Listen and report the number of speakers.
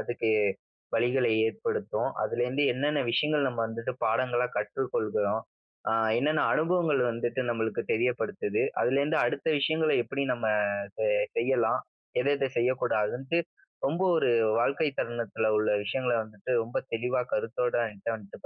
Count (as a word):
one